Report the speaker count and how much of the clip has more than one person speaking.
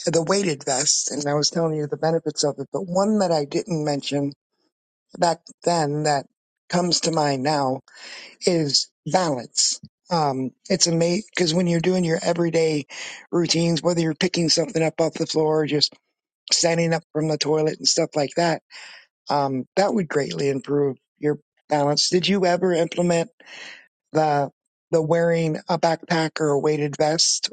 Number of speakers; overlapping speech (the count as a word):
one, no overlap